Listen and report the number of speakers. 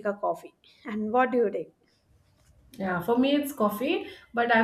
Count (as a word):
two